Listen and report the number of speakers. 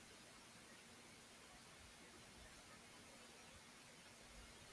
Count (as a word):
zero